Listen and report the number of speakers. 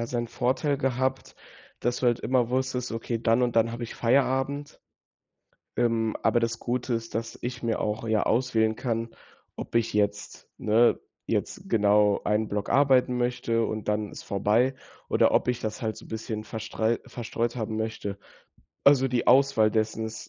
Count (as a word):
one